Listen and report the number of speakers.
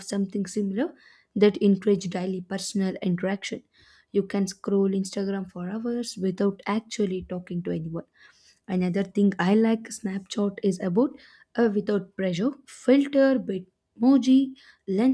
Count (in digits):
1